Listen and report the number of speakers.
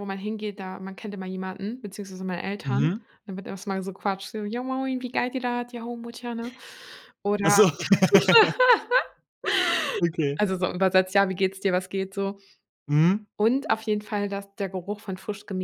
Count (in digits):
2